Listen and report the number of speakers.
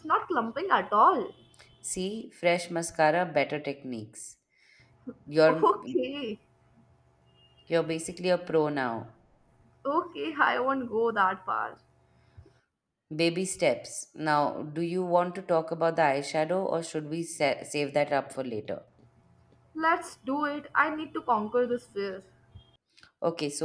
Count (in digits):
2